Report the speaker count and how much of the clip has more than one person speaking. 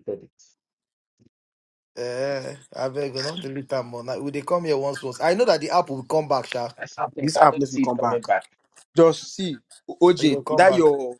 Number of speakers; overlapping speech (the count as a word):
three, about 16%